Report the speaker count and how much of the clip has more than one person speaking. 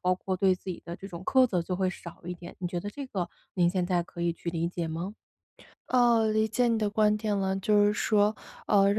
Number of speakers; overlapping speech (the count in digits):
2, no overlap